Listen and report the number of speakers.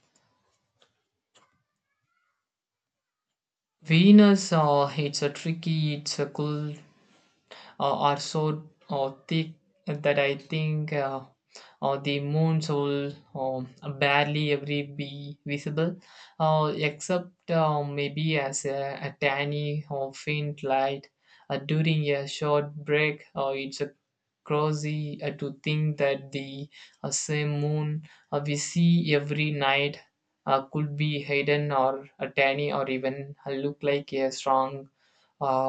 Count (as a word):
one